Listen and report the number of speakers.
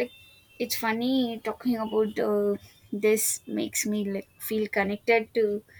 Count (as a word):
one